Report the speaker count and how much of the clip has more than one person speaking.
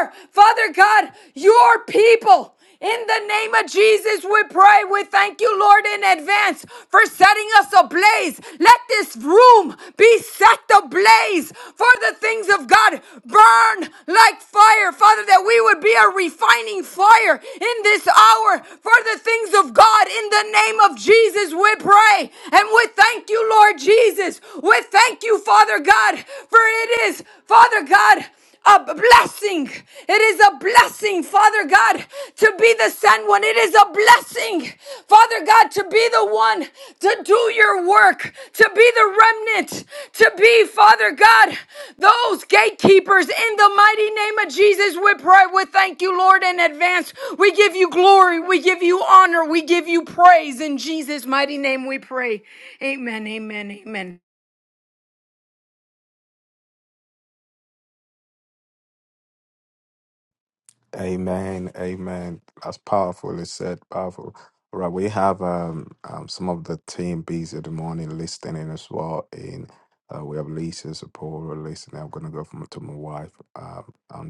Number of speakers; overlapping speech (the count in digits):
2, no overlap